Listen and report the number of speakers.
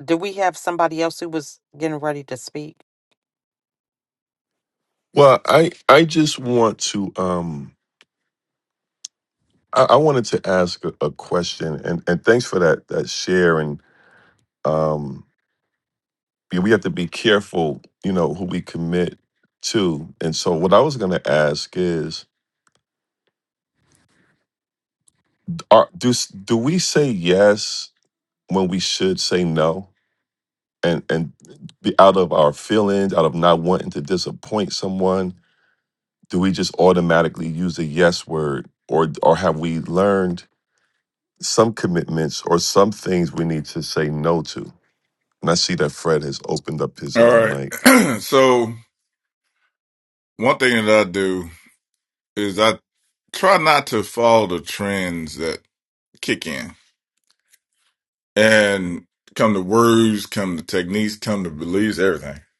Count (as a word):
three